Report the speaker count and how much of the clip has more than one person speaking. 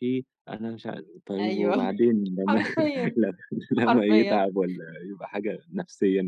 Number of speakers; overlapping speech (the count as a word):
two, about 20%